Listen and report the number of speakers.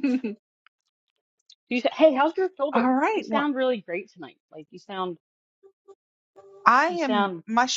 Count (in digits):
2